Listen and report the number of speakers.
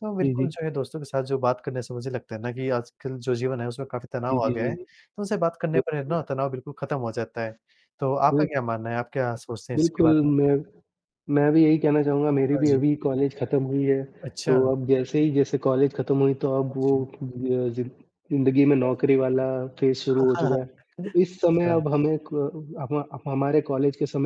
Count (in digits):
2